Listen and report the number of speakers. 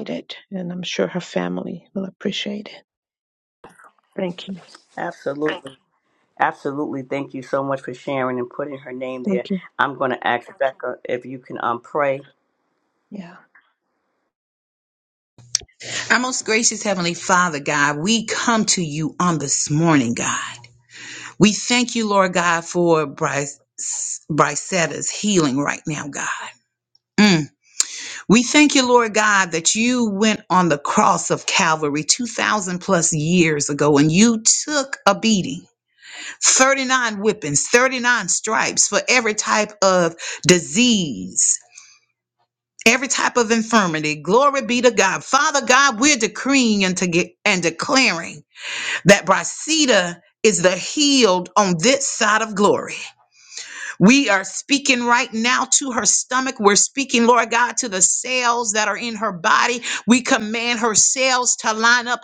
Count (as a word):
three